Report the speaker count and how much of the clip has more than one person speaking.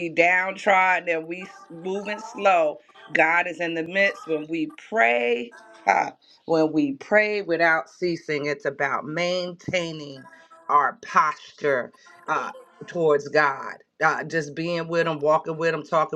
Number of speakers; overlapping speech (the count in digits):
1, no overlap